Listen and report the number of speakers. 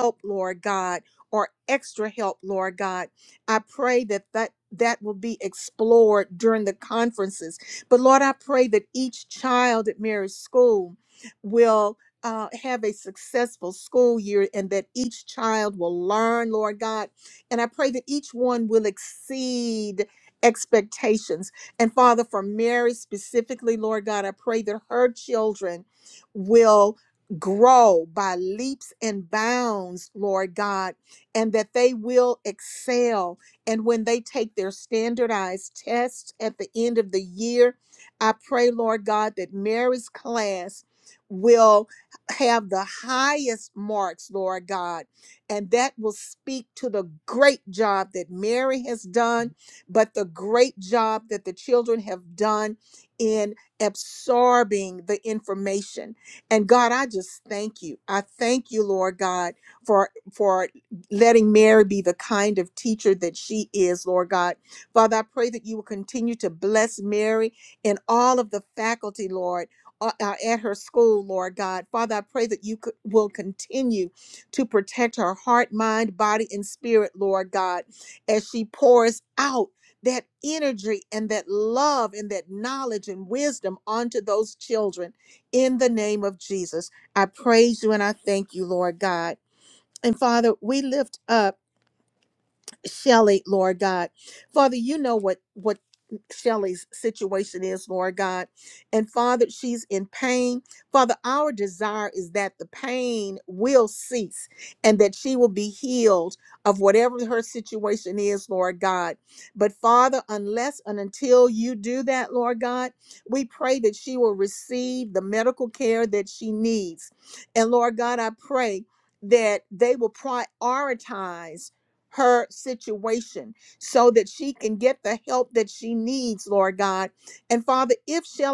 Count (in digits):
1